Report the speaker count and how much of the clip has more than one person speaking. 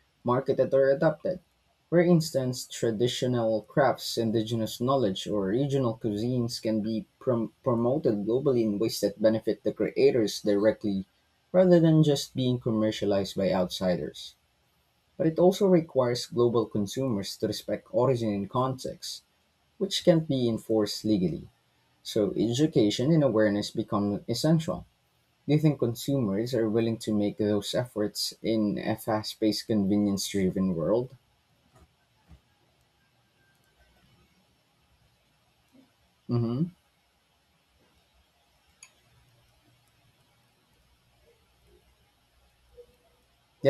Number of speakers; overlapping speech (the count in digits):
1, no overlap